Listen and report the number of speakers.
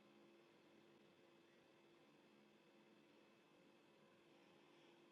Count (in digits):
0